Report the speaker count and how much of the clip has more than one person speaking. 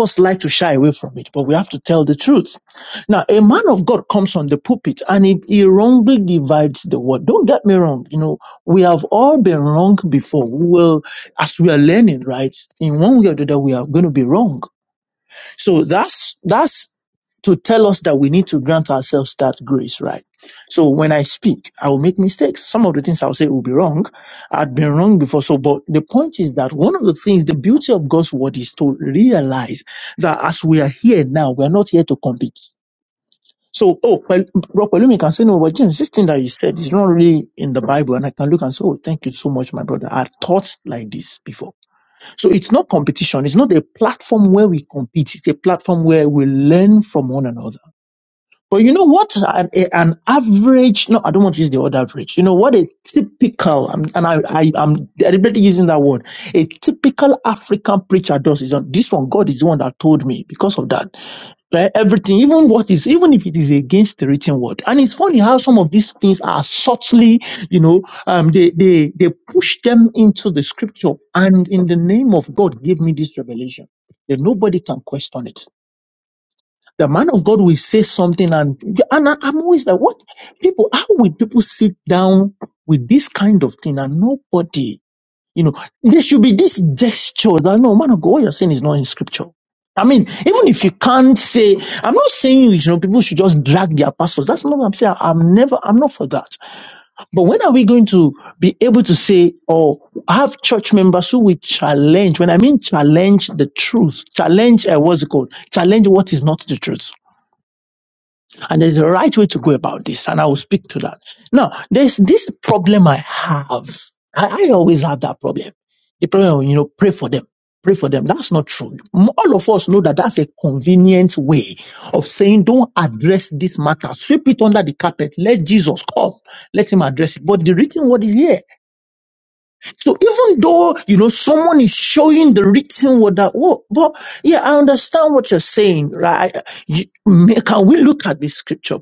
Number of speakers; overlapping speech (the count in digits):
1, no overlap